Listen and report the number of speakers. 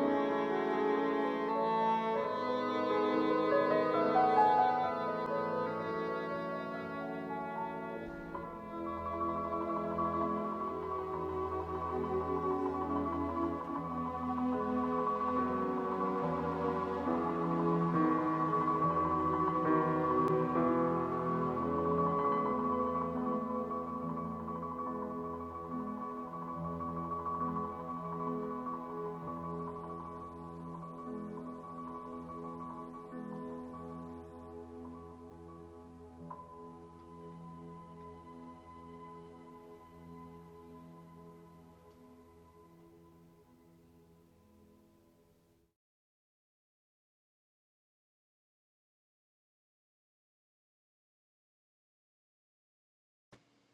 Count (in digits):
0